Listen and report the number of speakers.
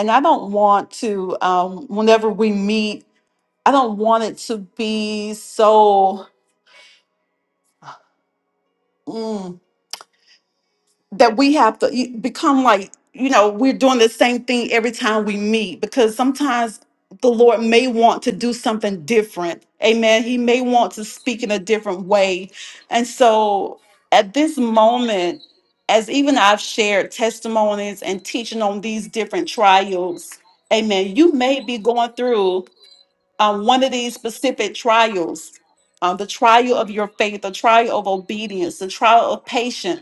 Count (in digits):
1